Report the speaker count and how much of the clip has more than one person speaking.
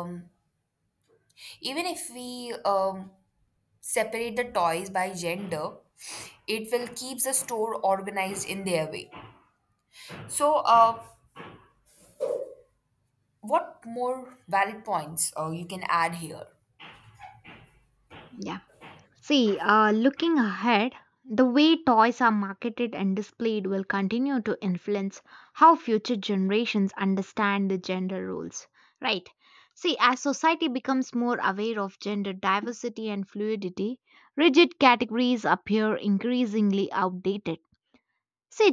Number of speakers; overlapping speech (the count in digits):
2, no overlap